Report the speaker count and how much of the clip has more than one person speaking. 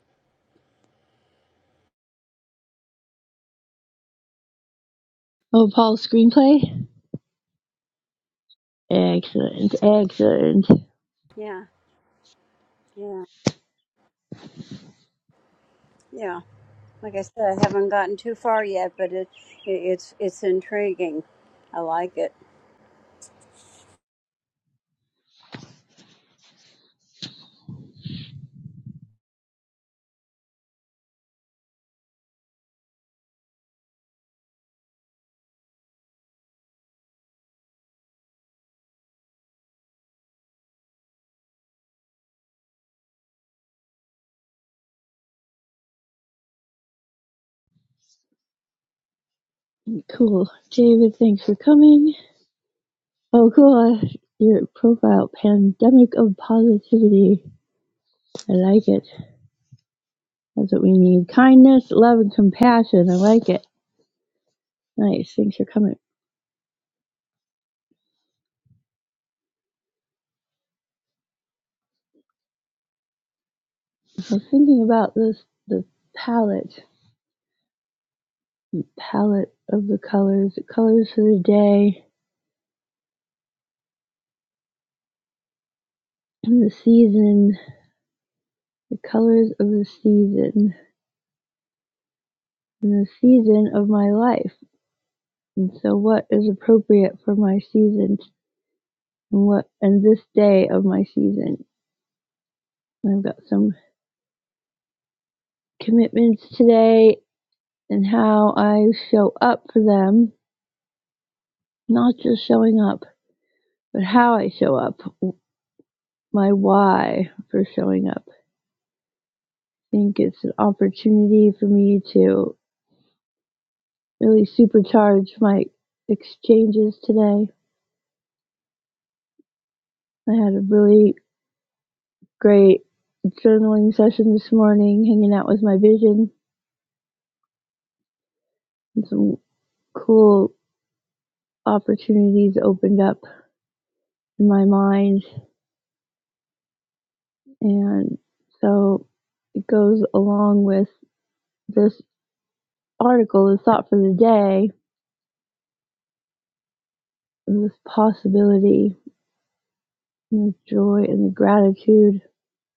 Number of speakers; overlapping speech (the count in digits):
2, no overlap